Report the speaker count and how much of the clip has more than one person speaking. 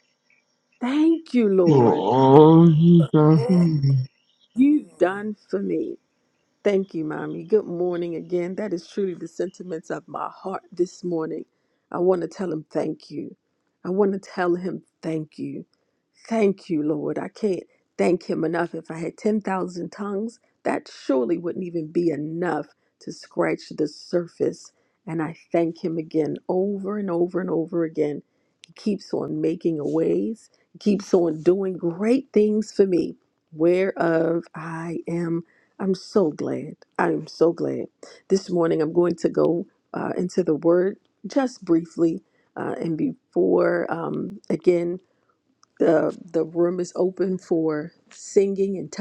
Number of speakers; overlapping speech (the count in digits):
2, about 1%